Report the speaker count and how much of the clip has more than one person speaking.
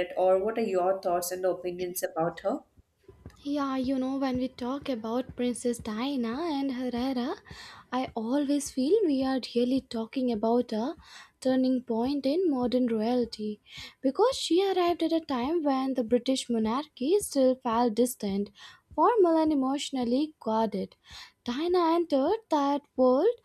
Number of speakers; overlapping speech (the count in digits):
2, no overlap